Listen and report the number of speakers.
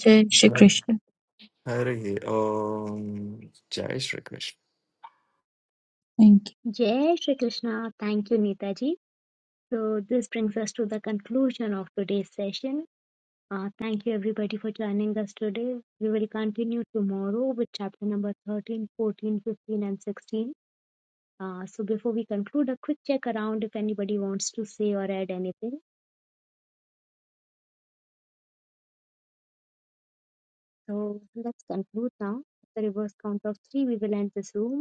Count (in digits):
3